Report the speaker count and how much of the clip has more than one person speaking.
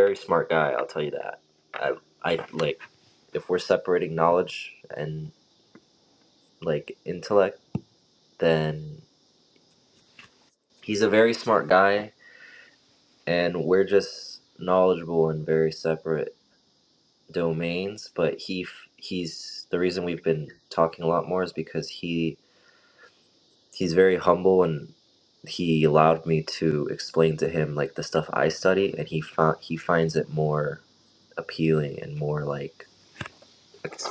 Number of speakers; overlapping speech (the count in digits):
1, no overlap